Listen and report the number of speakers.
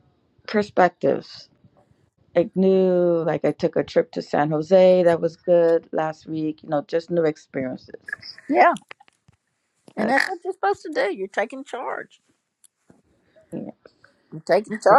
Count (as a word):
two